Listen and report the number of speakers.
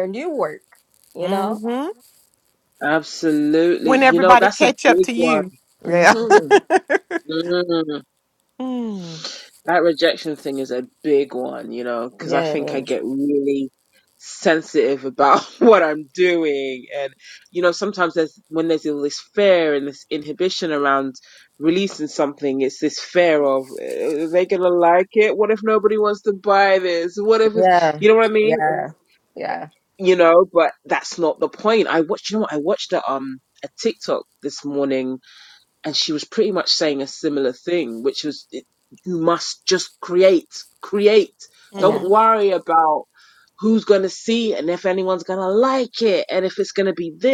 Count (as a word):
three